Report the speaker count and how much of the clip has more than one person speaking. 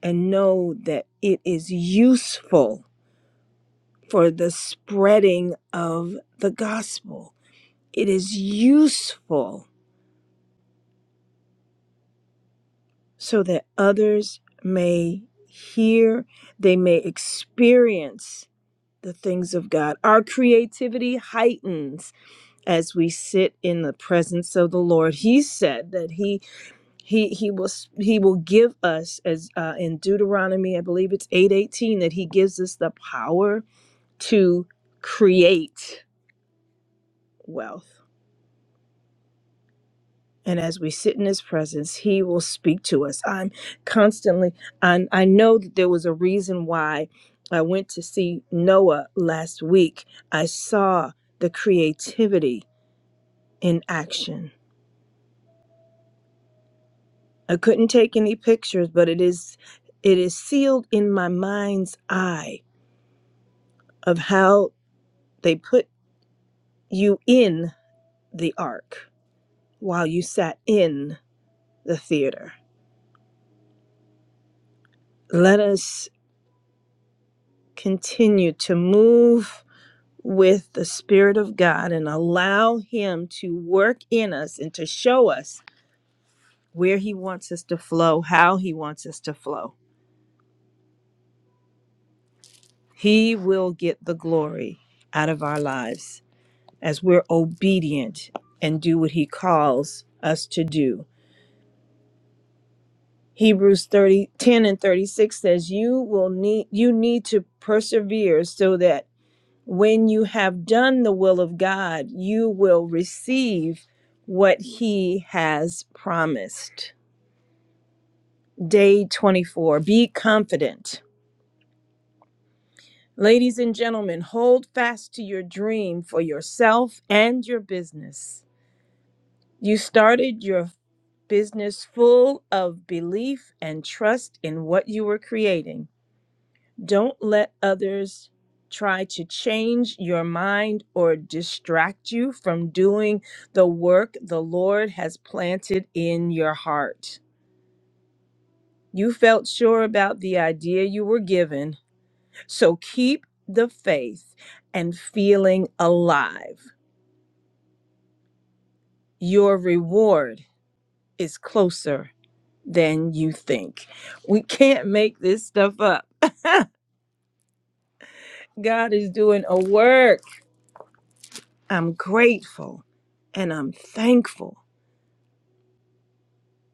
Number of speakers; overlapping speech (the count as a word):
one, no overlap